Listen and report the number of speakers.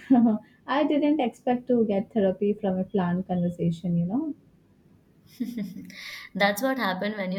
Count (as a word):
two